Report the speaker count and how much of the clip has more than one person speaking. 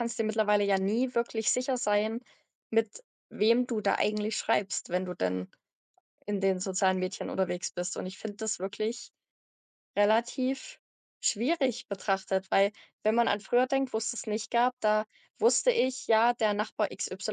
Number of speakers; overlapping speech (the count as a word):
one, no overlap